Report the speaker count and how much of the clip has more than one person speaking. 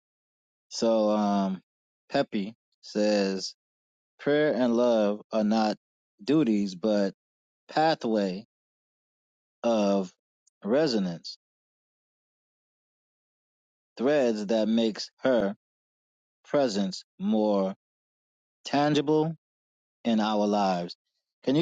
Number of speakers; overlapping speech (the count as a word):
one, no overlap